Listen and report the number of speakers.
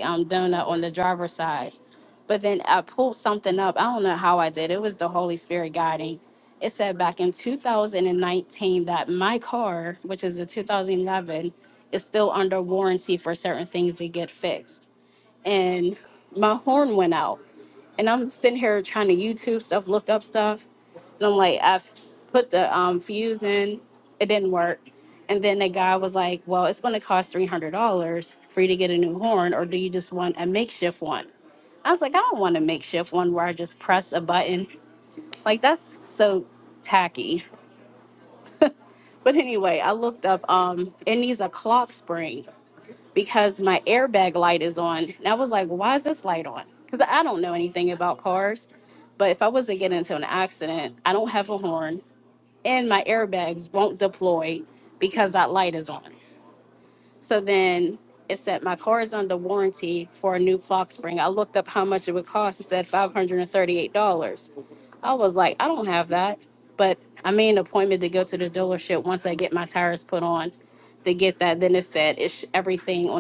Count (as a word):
one